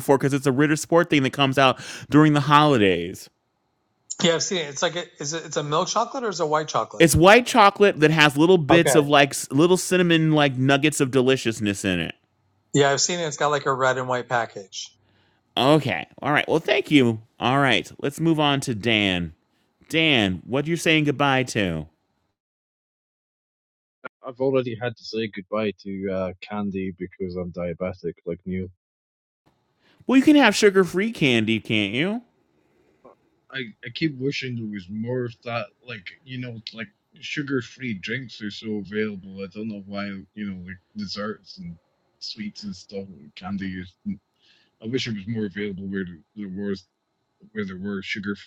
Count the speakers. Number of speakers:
3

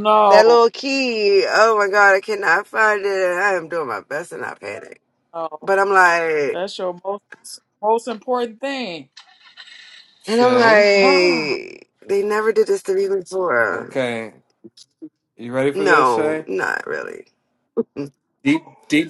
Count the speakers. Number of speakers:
3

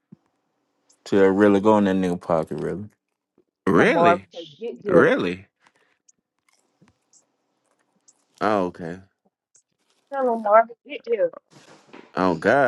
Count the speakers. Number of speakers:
3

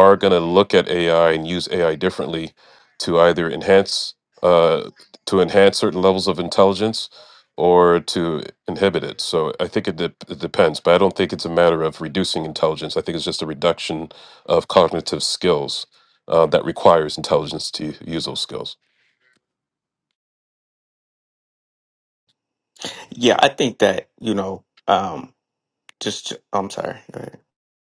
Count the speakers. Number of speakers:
2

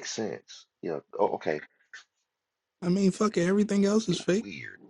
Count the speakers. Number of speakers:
2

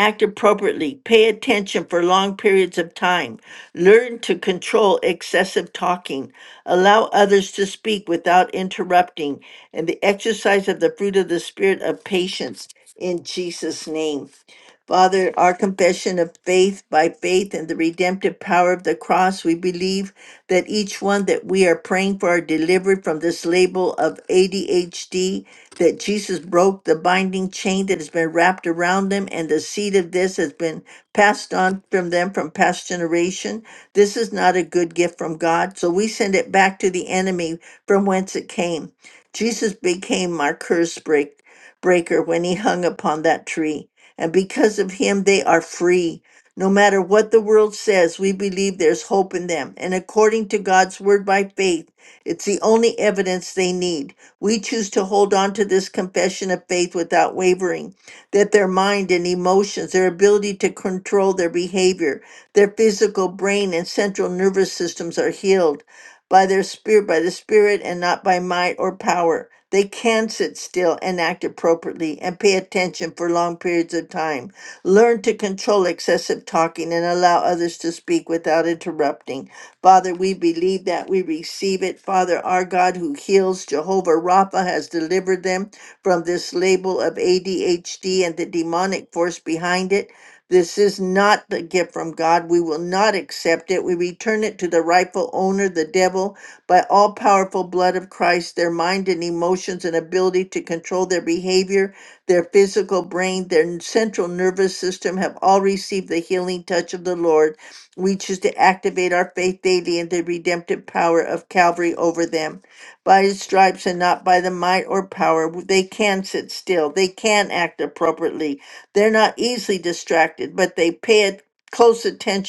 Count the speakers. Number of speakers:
1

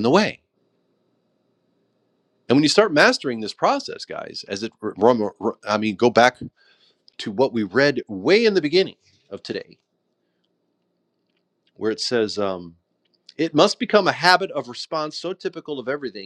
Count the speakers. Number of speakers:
1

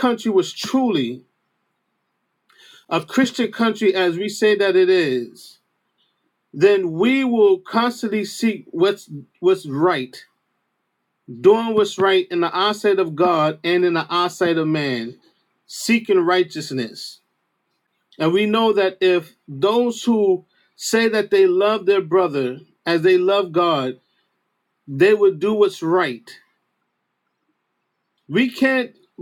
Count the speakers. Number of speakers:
1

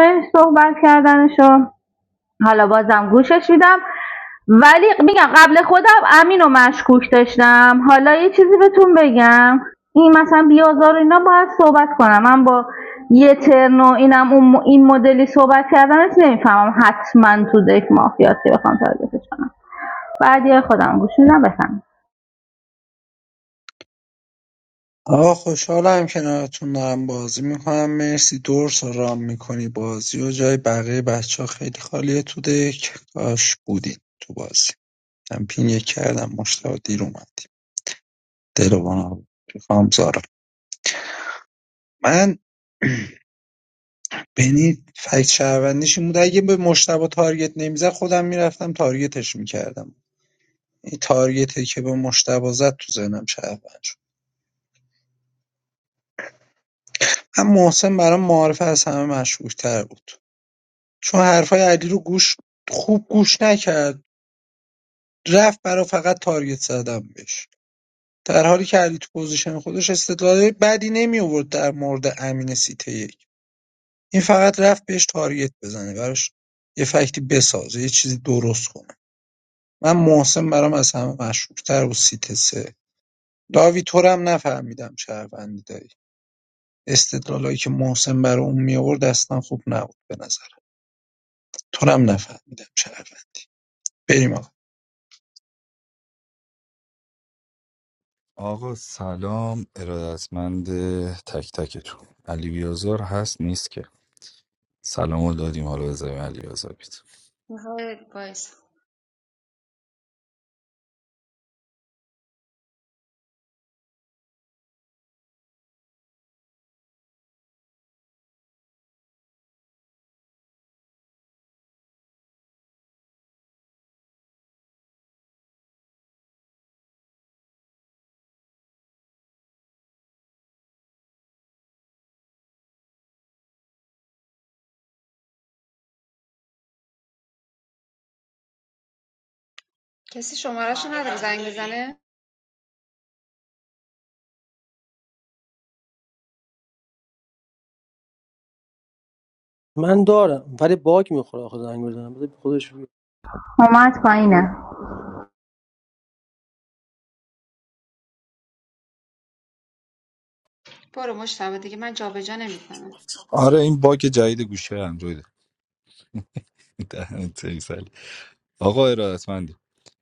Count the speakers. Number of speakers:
5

